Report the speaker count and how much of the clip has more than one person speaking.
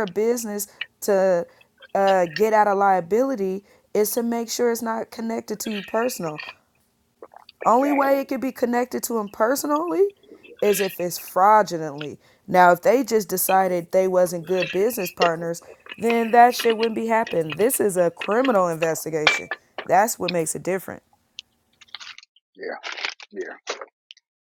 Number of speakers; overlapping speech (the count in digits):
2, about 3%